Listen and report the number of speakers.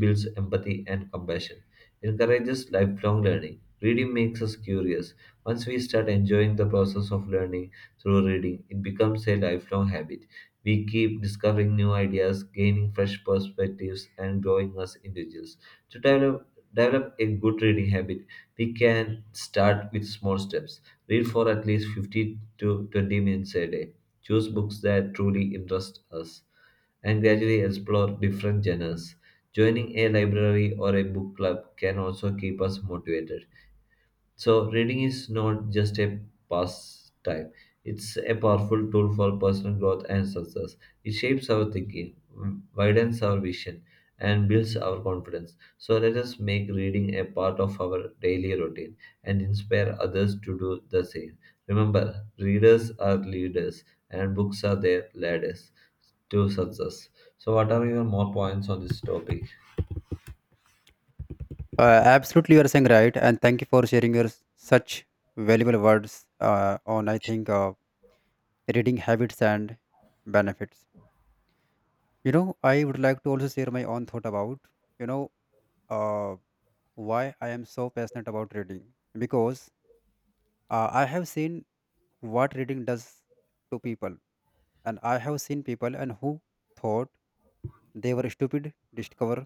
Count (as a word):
two